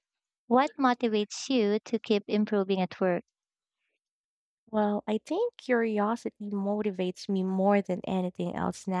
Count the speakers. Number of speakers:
2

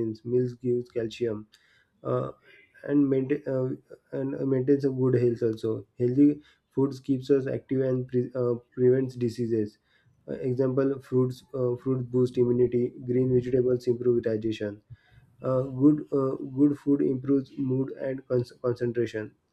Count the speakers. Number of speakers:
1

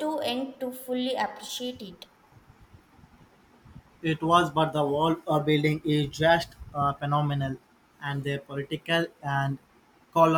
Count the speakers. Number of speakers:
2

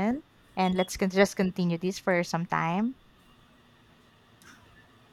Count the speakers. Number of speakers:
1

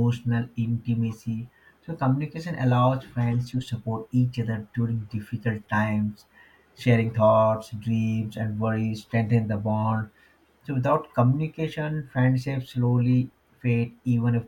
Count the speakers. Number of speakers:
1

